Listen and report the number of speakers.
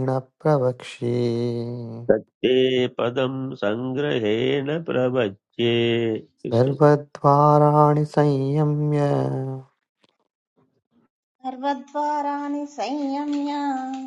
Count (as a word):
three